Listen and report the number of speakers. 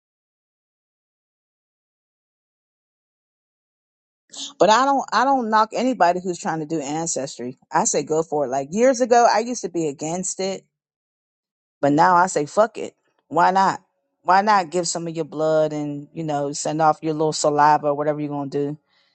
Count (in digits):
1